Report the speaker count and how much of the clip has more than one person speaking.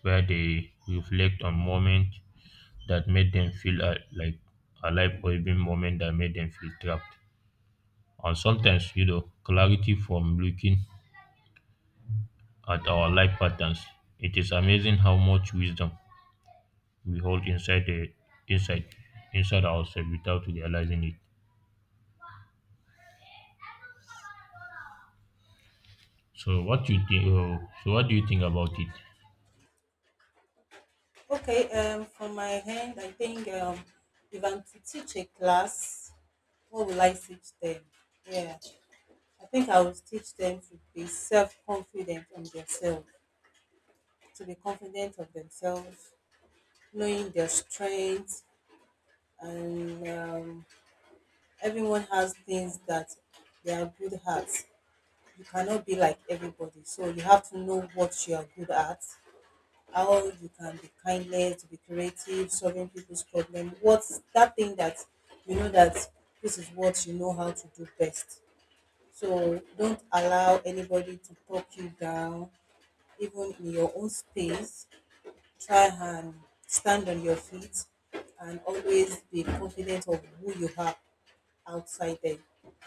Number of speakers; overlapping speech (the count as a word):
two, no overlap